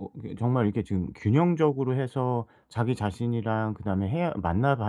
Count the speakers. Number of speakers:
1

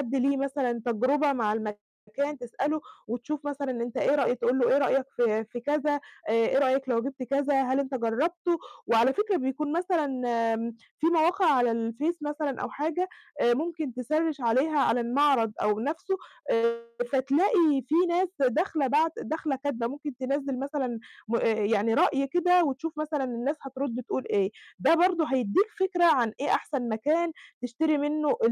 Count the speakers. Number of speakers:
1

